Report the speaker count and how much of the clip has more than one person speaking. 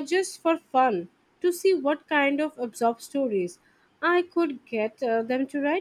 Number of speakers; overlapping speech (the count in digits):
1, no overlap